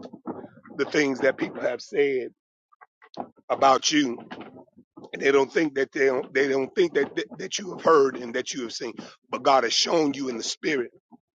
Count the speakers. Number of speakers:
1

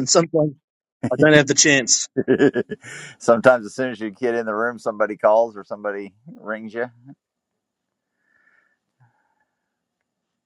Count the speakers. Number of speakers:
2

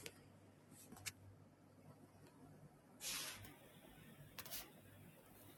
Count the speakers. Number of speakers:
0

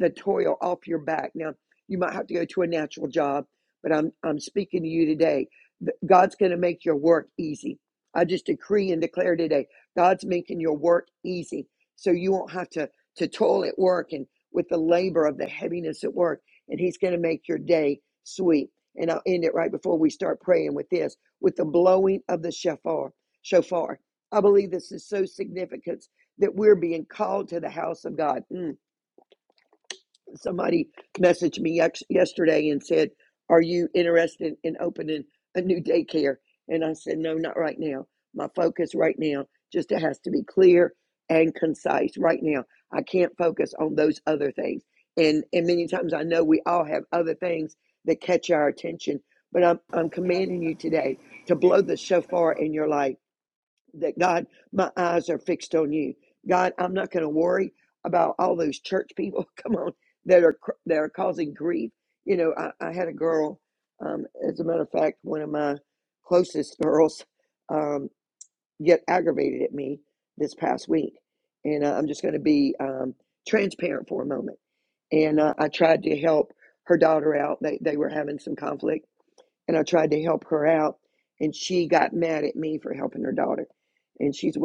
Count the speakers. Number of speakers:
1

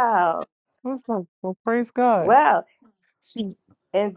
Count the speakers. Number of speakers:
2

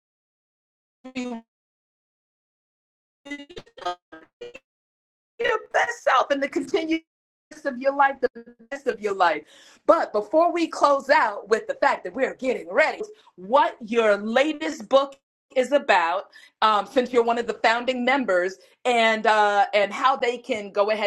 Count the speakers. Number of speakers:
1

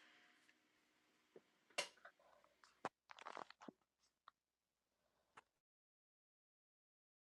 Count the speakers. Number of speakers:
0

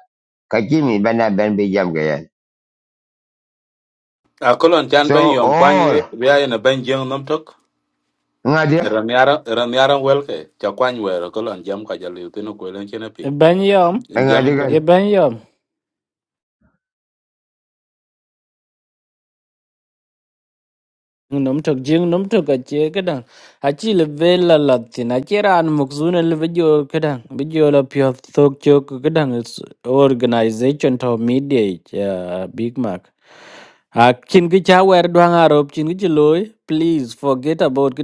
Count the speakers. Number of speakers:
3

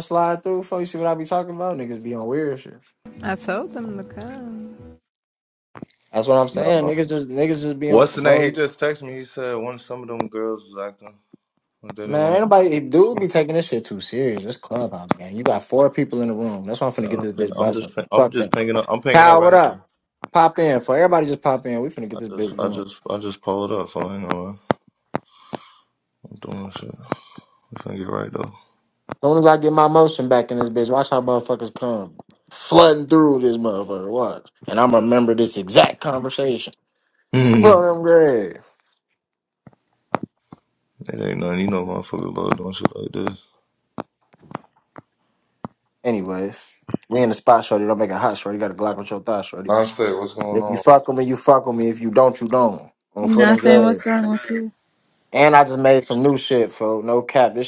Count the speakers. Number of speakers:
4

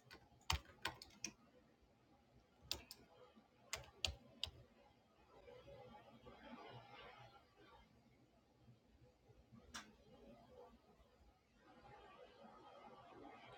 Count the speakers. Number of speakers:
0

